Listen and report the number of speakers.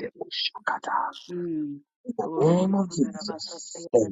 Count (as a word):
two